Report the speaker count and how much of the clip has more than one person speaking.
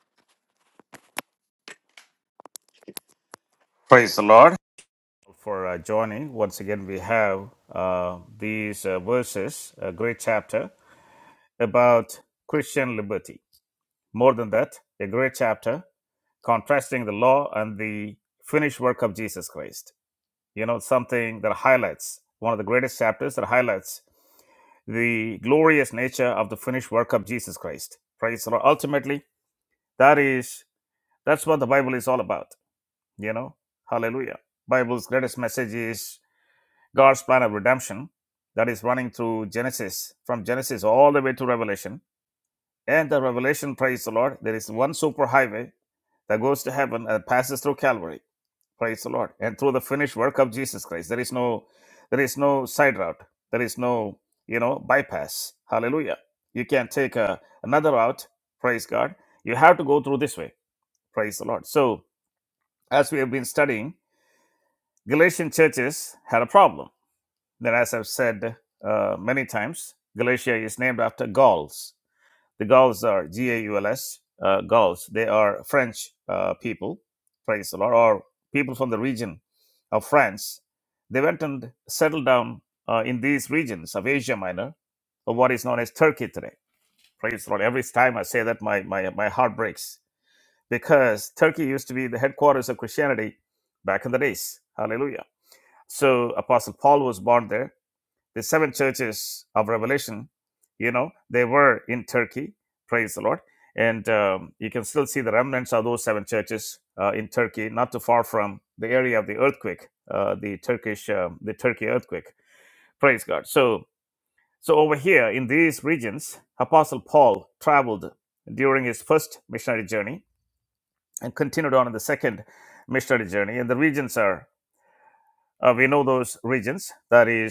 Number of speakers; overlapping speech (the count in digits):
1, no overlap